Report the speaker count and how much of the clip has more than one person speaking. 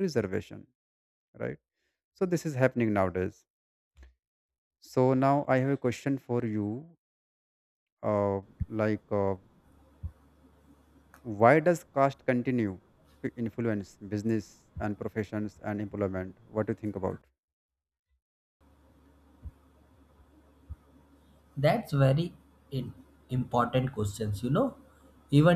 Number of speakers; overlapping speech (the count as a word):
two, no overlap